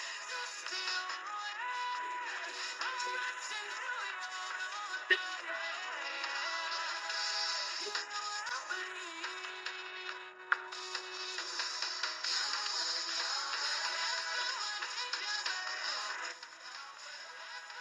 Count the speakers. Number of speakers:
0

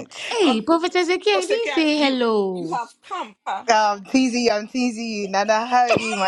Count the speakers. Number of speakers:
3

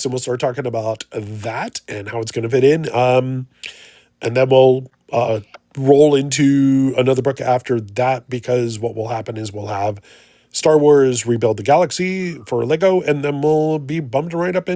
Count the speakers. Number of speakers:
1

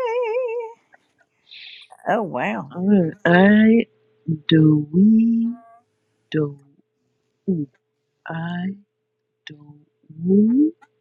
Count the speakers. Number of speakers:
2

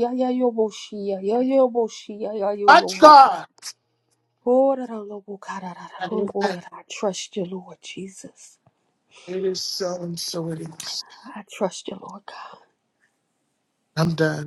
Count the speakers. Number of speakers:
2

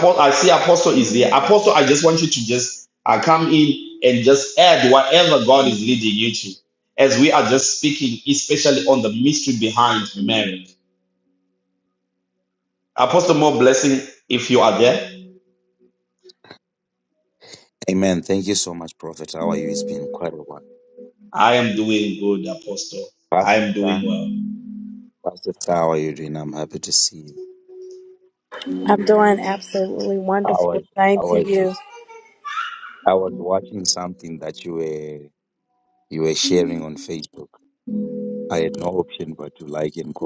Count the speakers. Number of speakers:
3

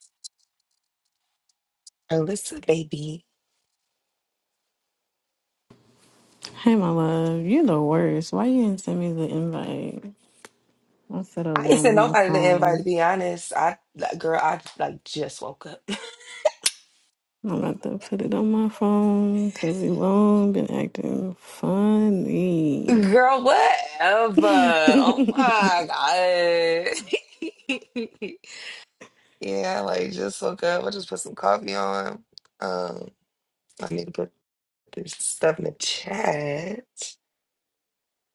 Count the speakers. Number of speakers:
2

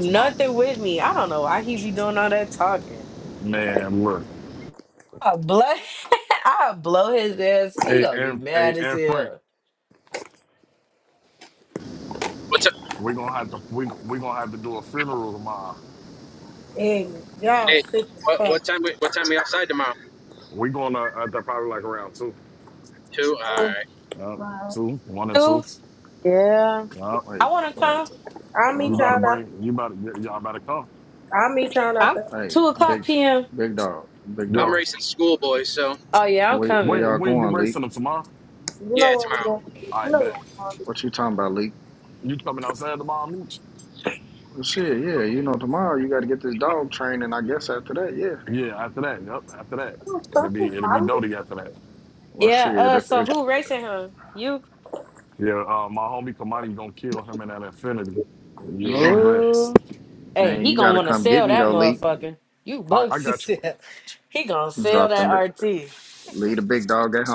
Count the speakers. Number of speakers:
5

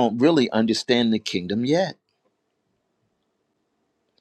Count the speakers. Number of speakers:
1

